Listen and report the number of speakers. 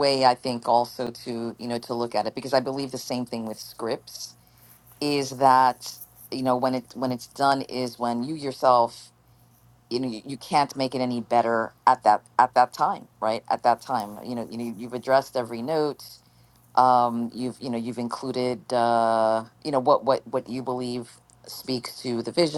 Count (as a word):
one